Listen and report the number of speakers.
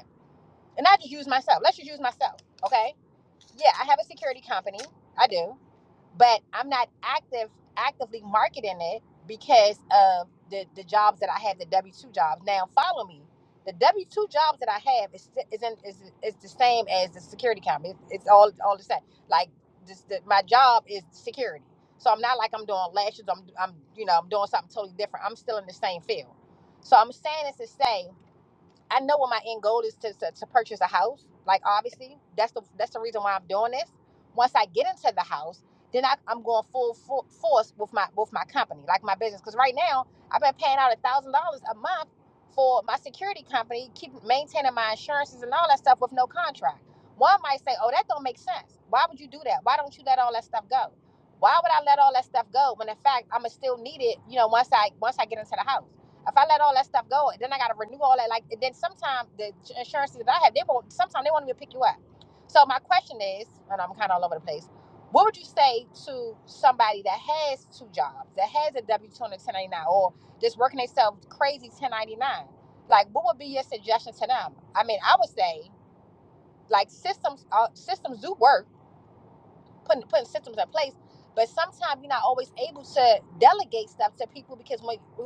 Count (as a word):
one